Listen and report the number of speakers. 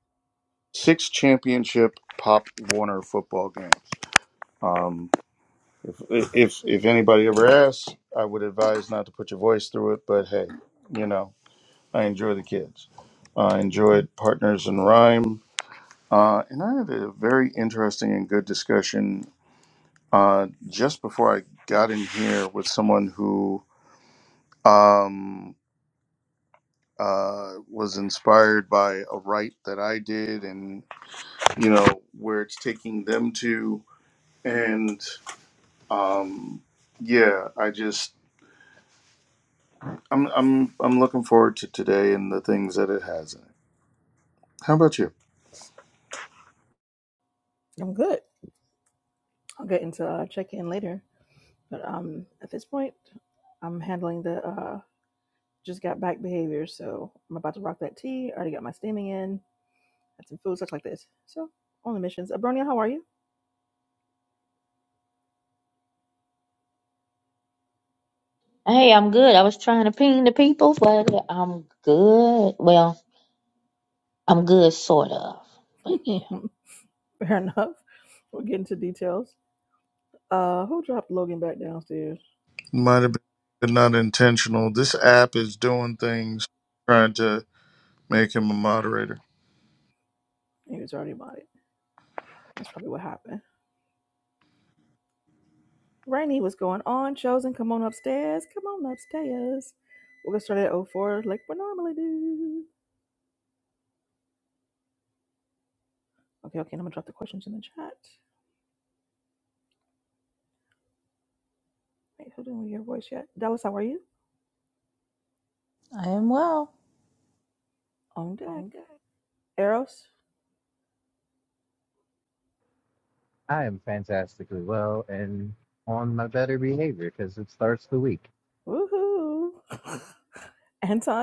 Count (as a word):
five